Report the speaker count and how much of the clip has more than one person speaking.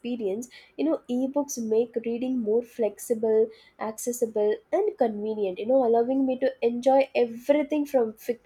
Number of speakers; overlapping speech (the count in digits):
1, no overlap